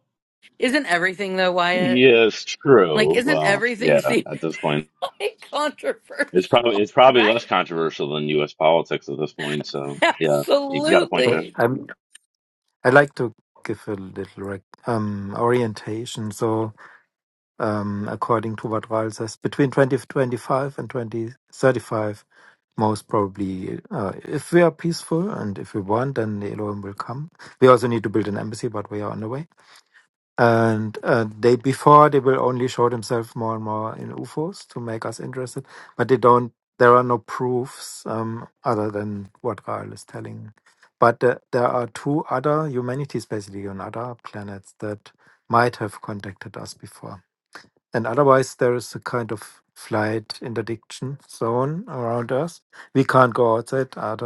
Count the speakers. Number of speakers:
3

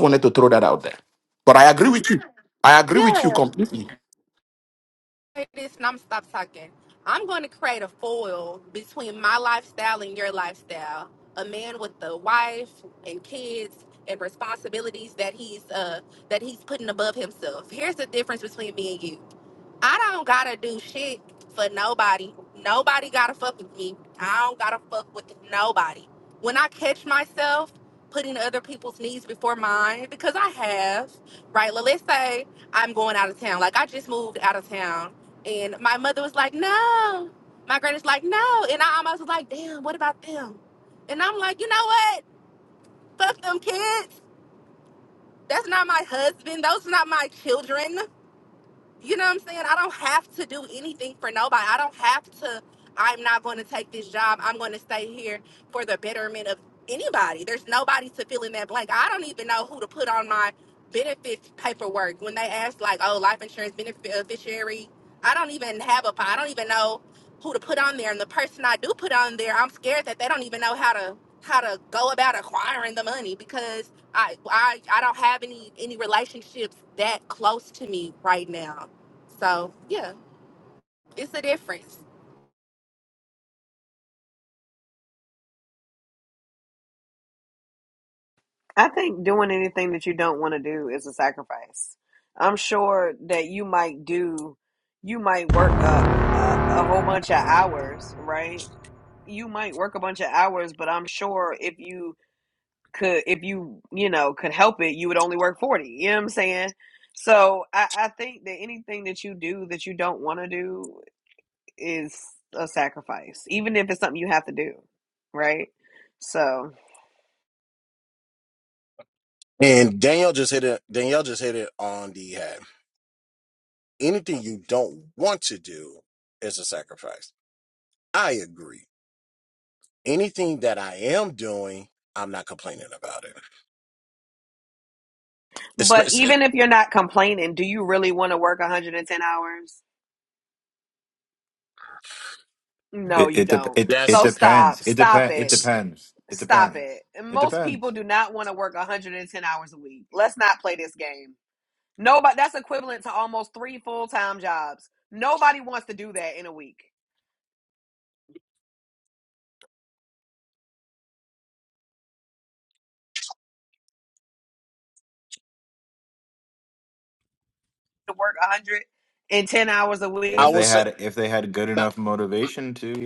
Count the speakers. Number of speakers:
5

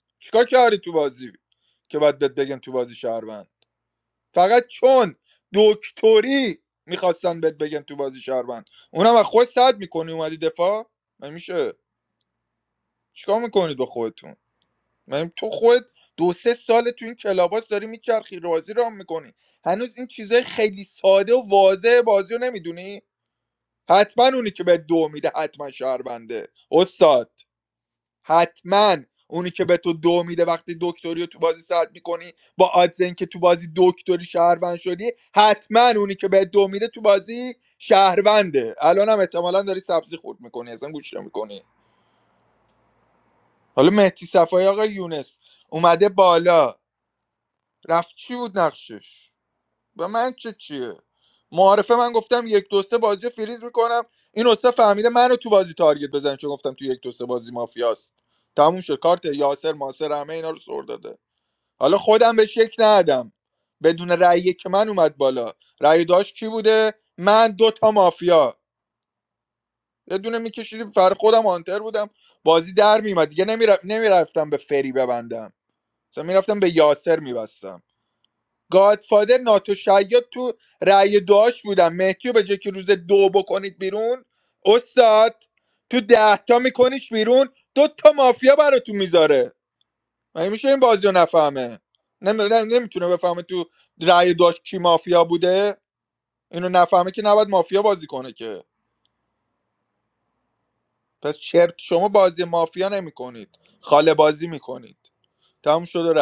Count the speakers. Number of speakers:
1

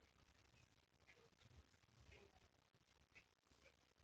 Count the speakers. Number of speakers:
0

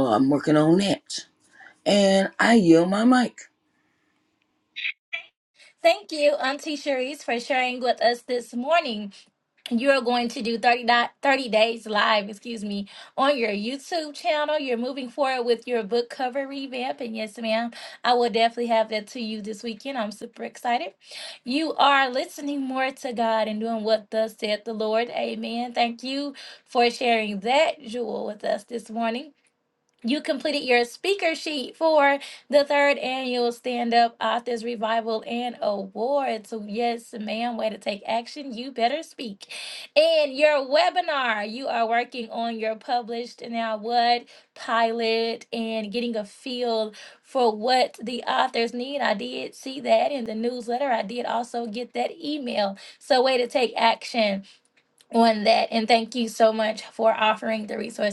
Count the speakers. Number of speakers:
2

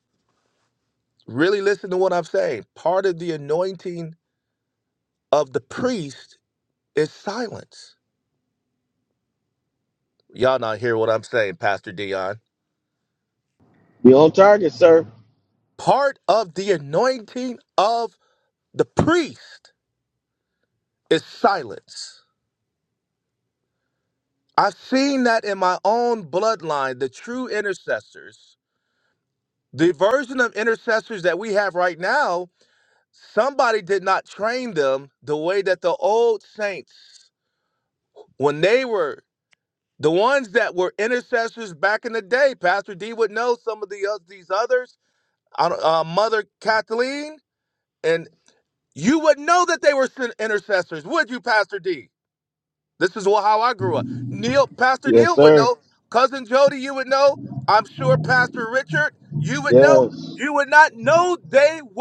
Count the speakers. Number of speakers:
2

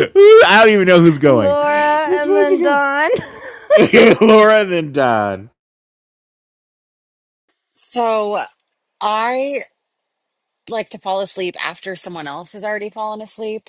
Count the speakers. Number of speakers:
3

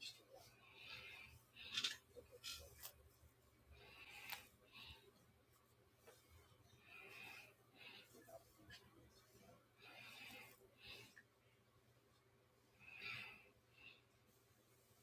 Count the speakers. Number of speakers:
0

